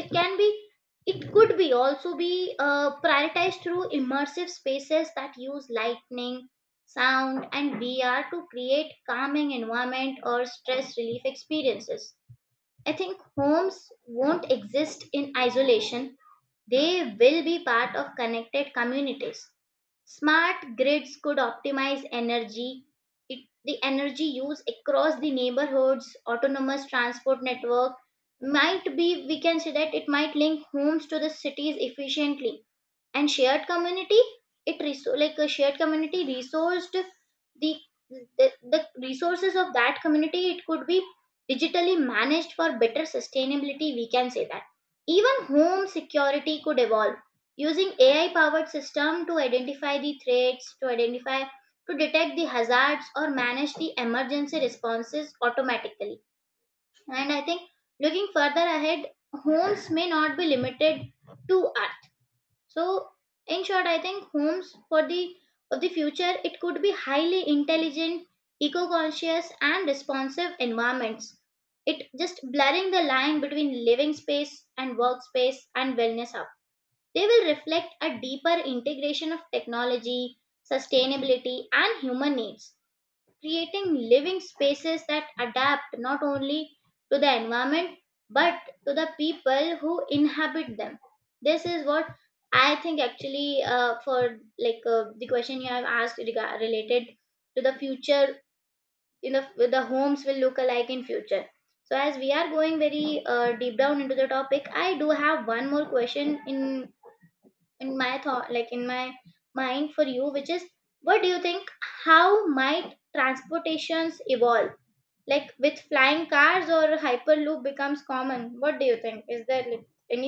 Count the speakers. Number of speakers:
1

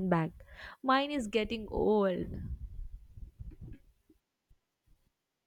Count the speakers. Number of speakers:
1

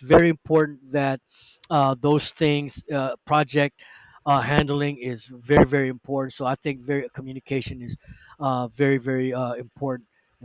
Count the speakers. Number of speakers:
1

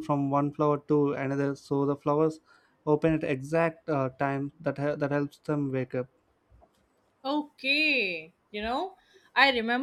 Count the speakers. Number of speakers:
2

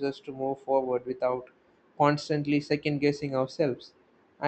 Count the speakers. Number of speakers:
1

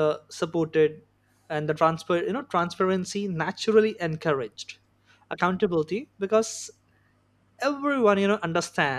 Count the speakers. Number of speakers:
1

